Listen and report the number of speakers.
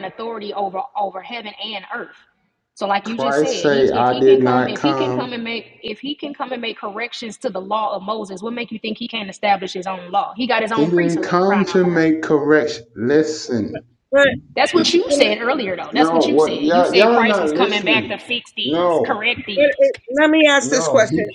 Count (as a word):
three